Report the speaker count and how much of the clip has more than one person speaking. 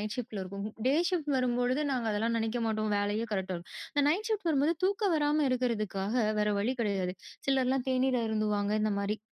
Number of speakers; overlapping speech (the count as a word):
one, no overlap